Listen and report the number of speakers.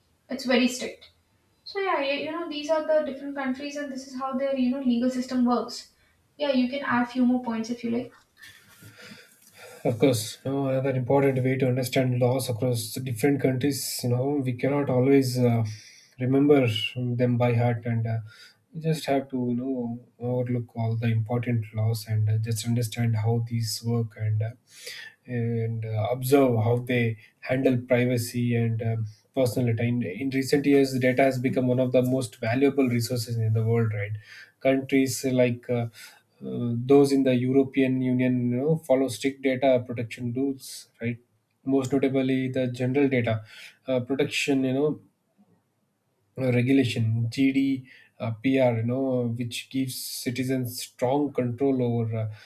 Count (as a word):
two